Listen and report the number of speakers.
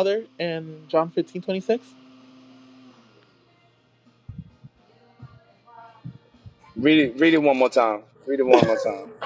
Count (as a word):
two